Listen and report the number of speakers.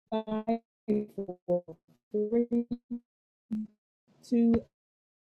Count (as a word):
one